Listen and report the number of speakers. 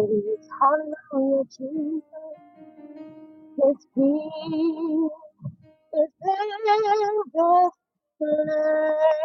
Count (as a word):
one